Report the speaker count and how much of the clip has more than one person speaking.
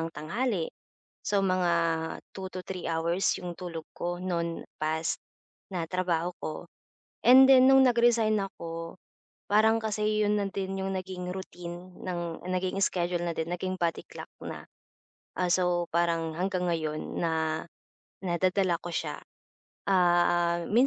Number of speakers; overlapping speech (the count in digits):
1, no overlap